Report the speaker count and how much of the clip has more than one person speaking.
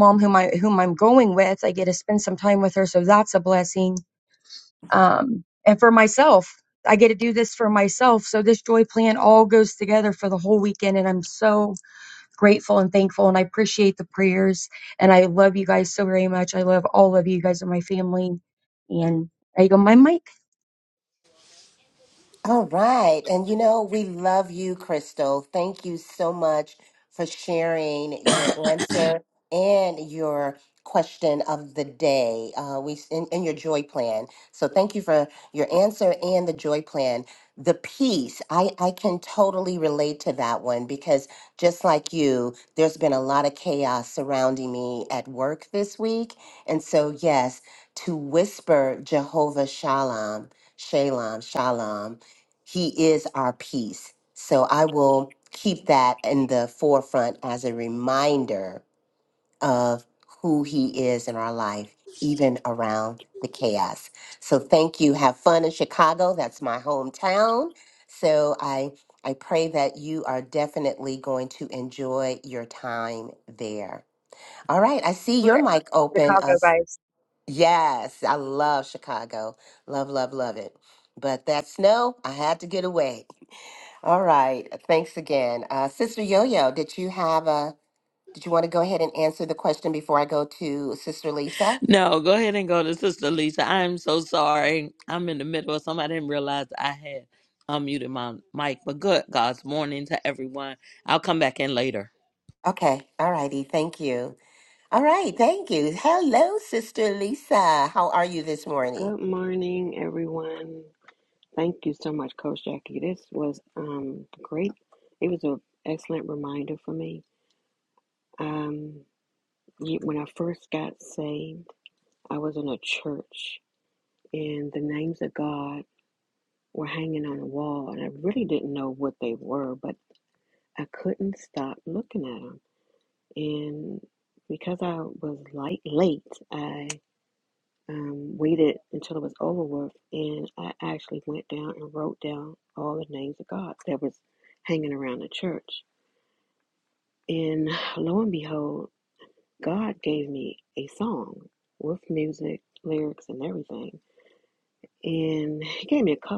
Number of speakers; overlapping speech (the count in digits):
4, about 1%